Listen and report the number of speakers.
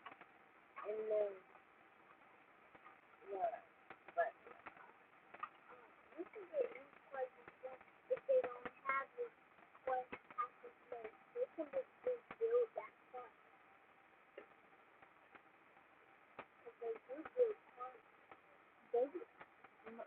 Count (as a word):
zero